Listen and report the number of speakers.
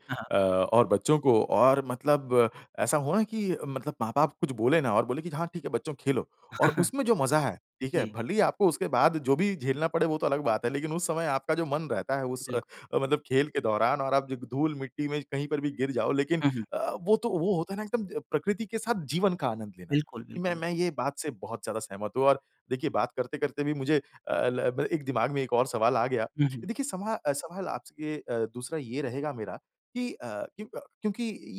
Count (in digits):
2